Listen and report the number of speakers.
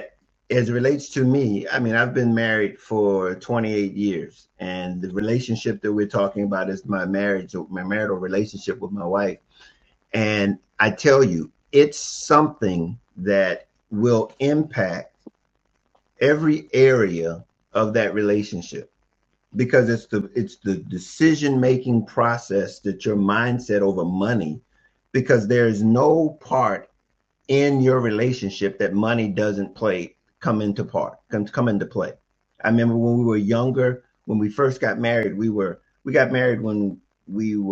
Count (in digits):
1